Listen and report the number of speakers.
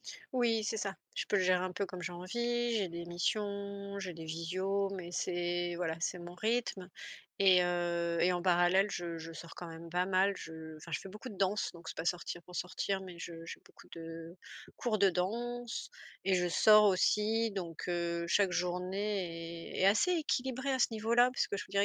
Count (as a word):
one